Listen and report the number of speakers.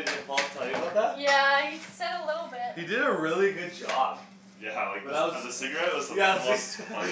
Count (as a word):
three